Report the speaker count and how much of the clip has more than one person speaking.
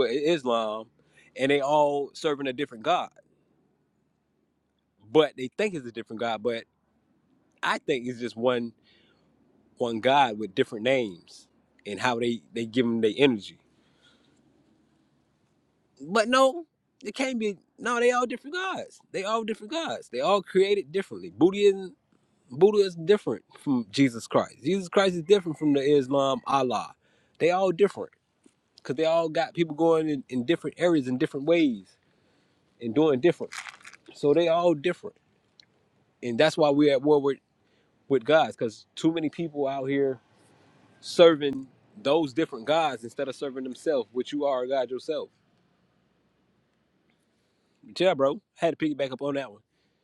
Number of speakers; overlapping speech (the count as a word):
one, no overlap